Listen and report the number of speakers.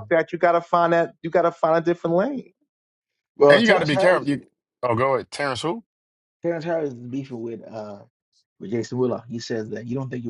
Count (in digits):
3